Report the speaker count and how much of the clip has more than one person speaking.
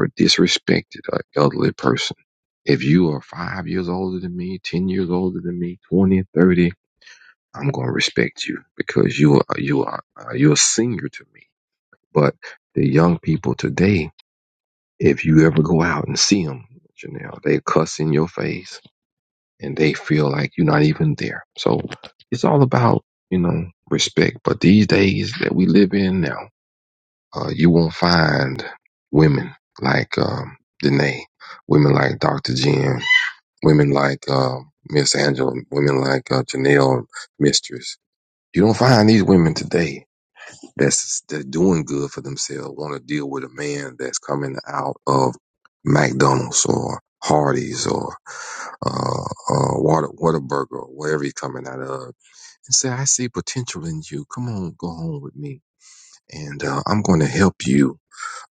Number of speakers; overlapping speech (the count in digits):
1, no overlap